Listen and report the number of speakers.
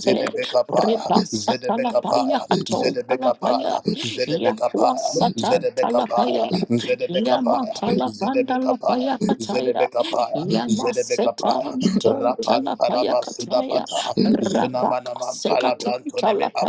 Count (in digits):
2